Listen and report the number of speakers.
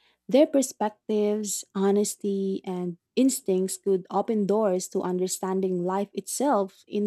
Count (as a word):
one